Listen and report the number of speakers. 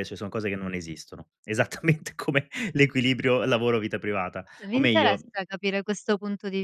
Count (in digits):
2